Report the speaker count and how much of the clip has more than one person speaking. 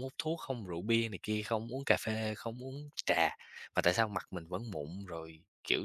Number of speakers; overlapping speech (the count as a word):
one, no overlap